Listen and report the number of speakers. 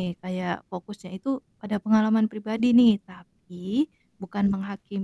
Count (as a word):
one